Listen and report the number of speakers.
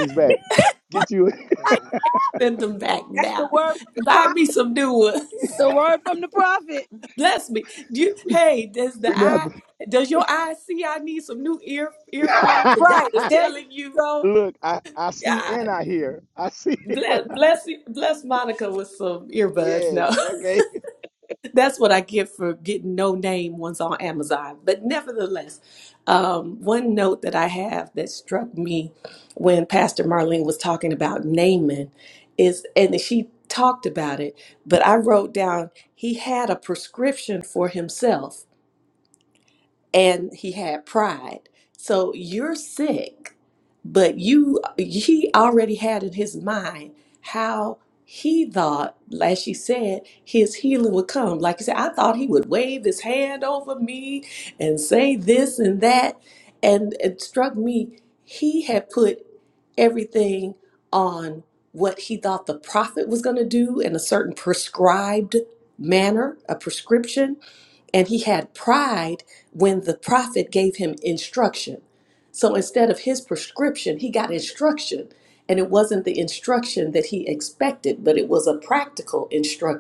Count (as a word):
three